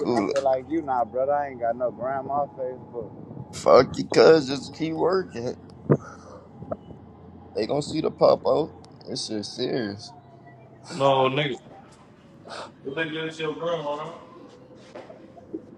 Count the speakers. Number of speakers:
3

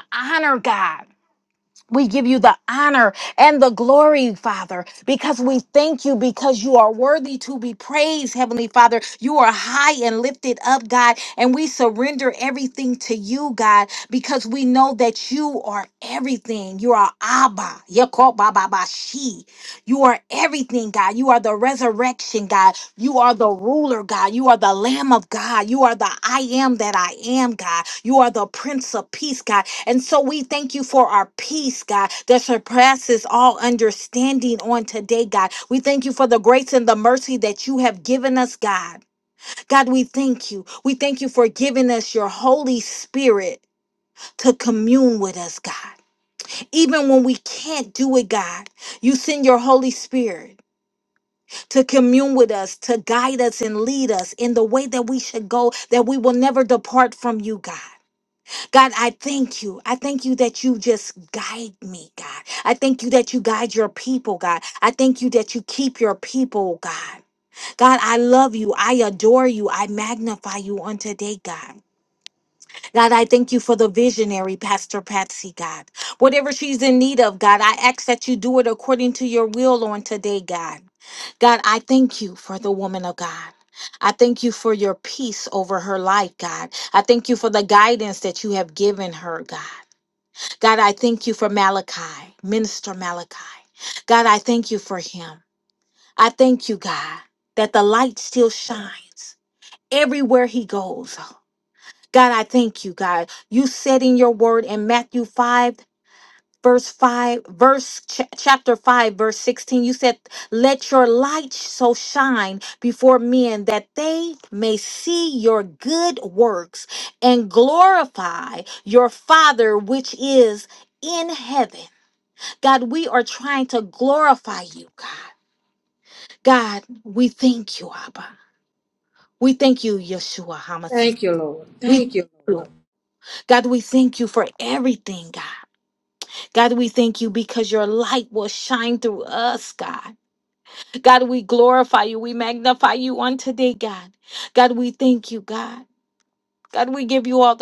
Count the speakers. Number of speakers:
2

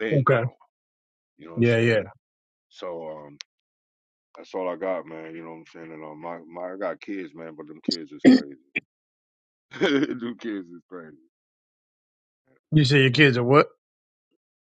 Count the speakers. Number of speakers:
2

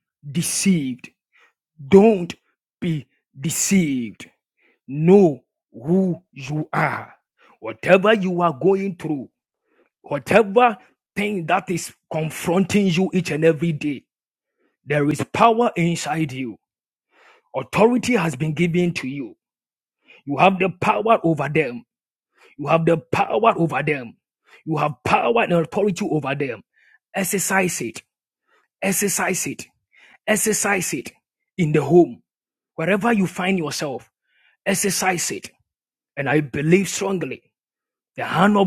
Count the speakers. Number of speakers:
1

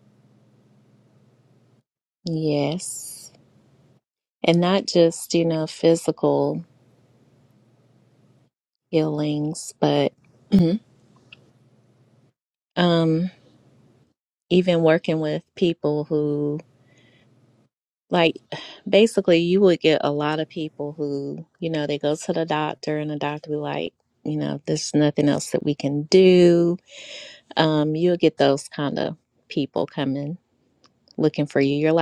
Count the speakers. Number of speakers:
1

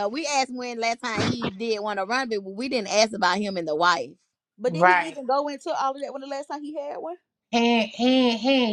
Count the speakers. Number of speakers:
3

